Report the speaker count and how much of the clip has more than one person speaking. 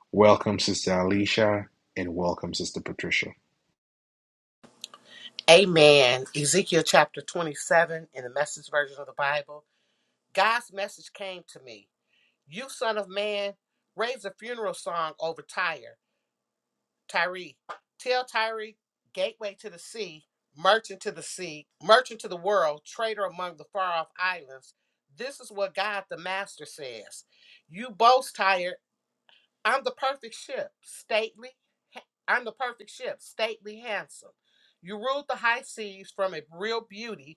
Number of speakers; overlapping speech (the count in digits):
2, no overlap